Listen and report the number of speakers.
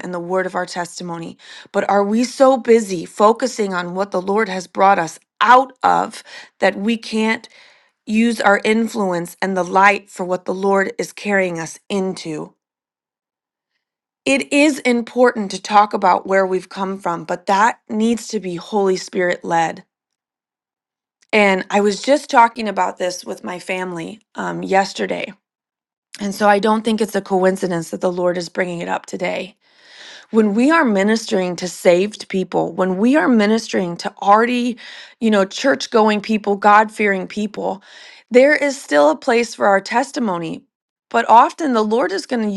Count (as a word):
one